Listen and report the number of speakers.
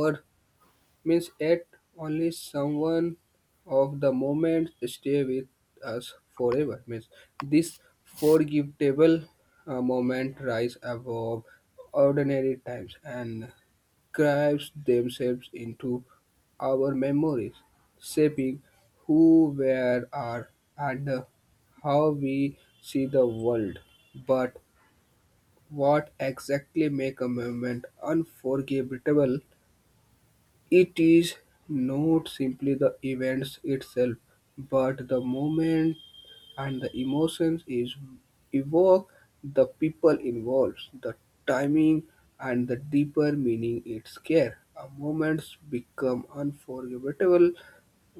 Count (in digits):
1